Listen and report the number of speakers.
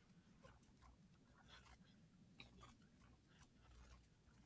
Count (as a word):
zero